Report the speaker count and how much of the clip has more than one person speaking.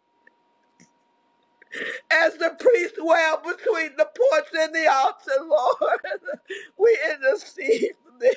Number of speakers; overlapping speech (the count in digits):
1, no overlap